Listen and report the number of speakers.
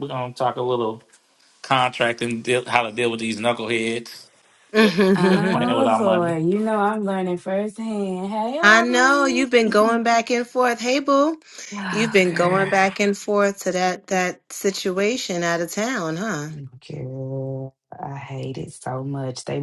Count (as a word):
three